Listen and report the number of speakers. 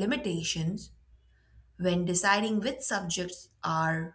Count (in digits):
1